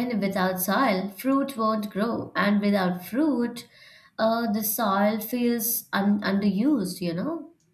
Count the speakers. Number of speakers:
1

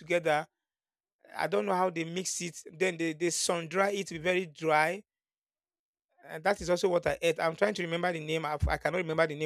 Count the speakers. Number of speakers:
1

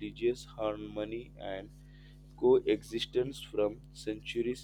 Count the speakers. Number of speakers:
1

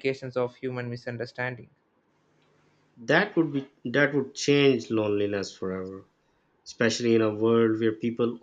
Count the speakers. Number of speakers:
2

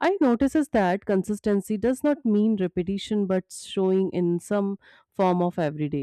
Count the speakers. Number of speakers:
1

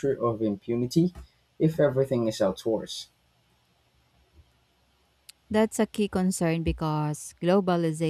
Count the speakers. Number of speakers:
2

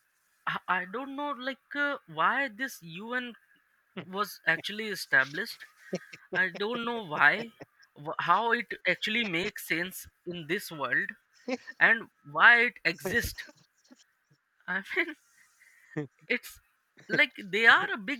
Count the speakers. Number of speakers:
1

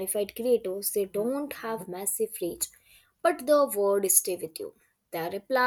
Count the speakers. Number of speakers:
1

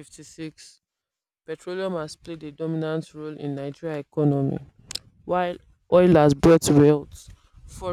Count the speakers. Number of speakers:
1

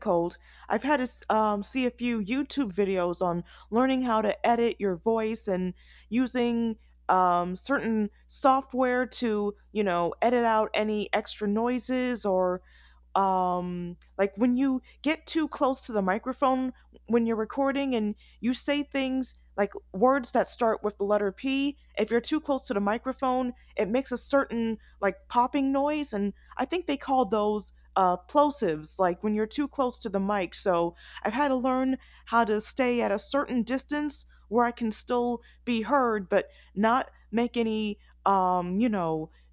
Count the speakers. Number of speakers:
1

